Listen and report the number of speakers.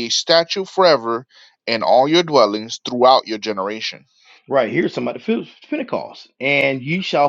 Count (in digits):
2